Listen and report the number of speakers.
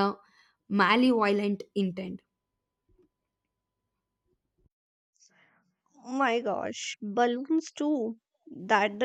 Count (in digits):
2